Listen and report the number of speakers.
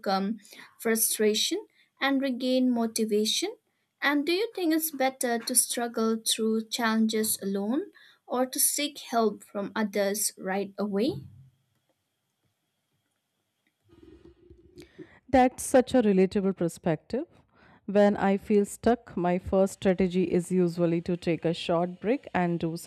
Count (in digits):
2